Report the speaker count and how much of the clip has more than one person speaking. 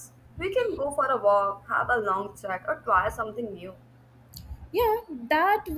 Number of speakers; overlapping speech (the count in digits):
2, no overlap